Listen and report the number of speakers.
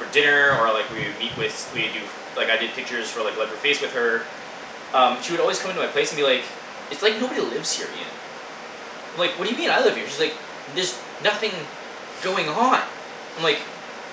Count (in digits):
1